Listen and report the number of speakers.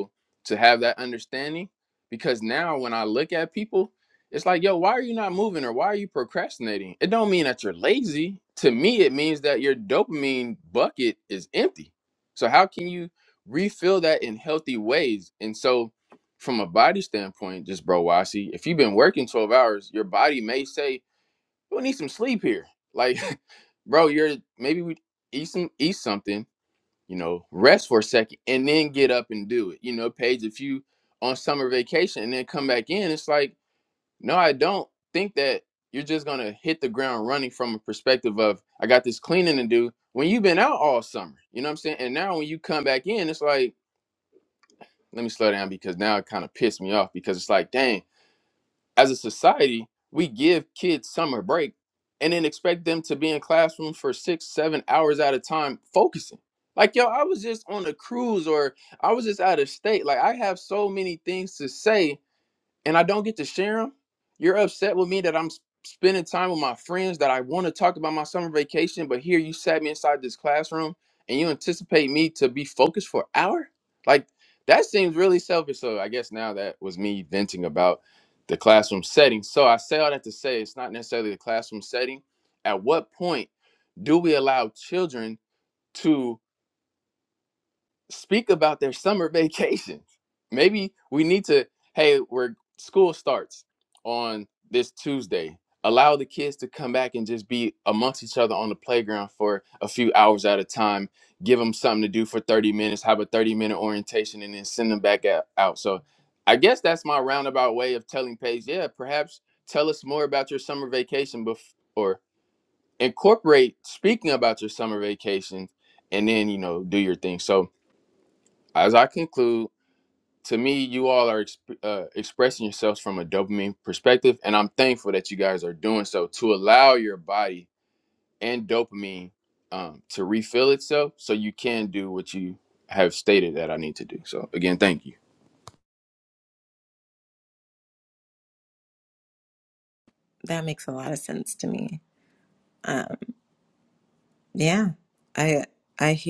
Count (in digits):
2